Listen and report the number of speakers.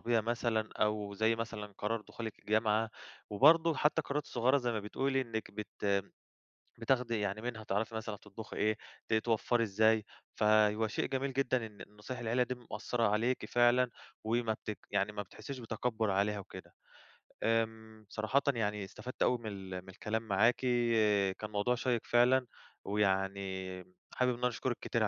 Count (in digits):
1